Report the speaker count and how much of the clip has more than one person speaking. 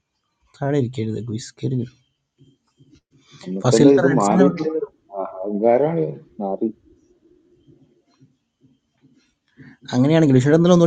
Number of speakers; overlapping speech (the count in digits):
2, about 8%